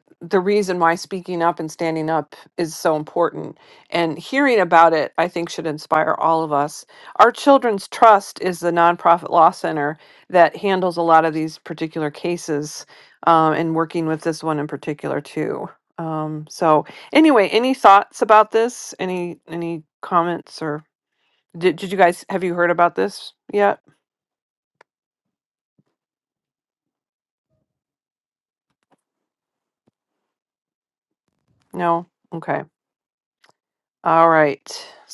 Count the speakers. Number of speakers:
one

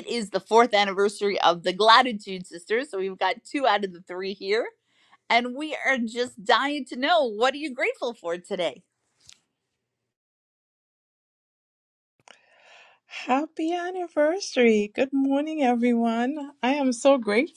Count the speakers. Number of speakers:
two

